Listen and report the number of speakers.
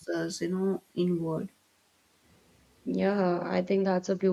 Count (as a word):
two